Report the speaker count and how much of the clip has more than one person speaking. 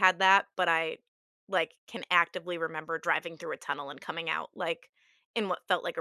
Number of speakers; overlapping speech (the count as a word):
one, no overlap